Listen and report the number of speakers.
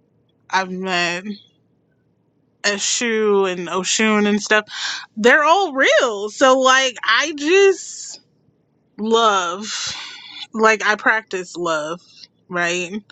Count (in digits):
1